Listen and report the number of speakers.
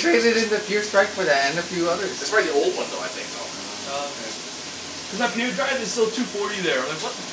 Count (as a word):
three